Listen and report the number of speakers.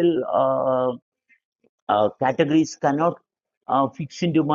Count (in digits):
1